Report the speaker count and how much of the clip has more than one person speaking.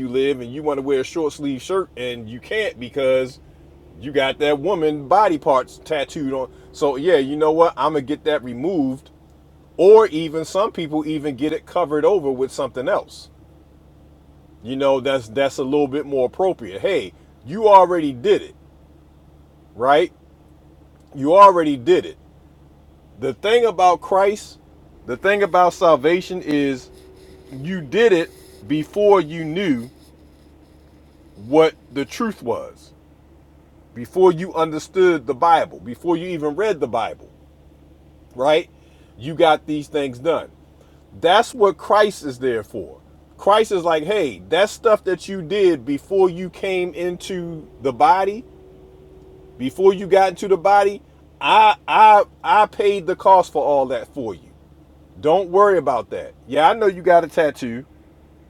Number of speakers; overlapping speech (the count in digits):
1, no overlap